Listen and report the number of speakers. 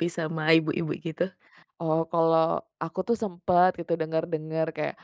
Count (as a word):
two